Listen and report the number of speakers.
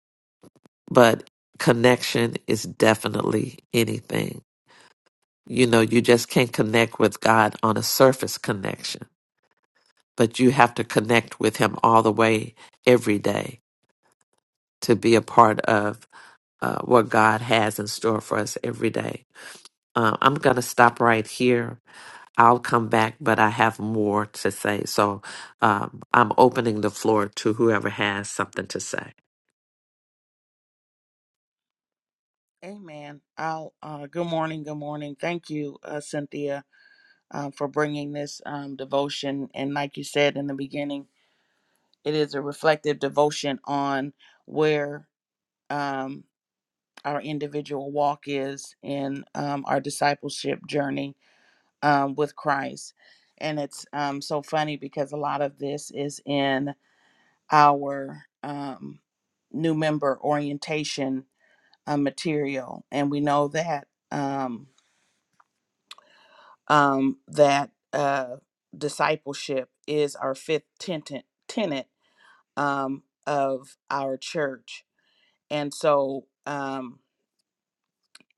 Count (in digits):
2